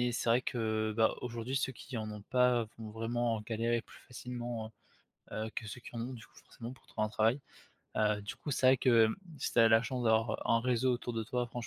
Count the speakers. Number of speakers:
1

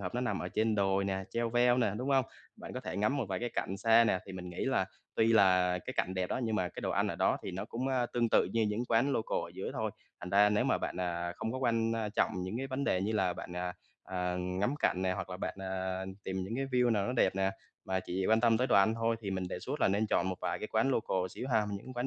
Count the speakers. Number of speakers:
1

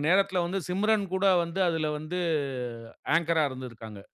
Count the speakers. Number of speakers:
1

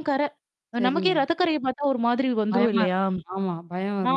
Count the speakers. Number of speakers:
2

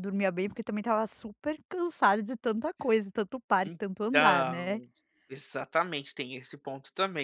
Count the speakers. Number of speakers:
2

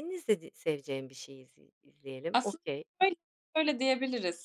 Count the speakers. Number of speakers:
2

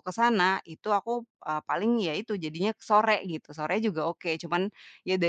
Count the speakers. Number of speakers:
1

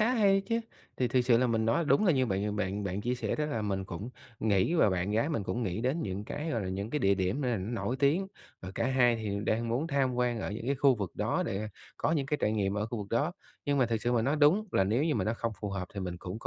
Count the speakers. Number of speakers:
1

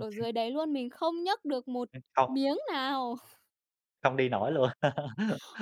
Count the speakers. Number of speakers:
2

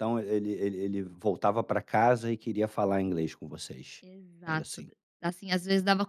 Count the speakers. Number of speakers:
2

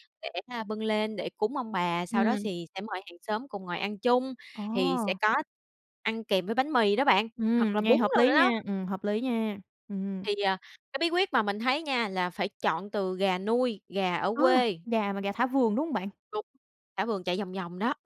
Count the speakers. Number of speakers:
2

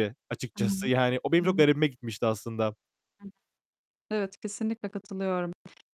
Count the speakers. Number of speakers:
2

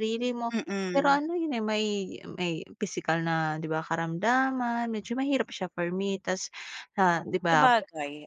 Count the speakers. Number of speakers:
2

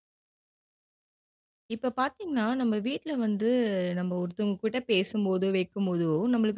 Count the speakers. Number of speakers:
1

